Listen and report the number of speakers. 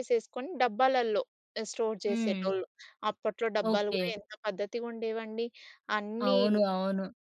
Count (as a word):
two